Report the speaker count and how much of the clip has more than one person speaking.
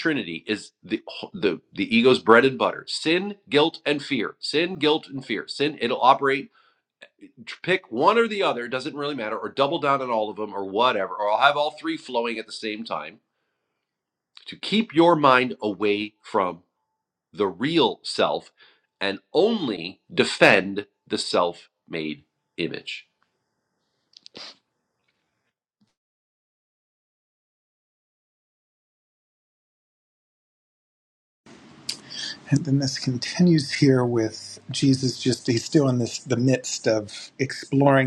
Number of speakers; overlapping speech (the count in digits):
2, no overlap